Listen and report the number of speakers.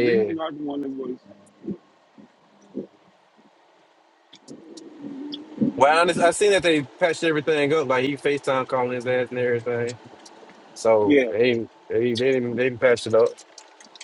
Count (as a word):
two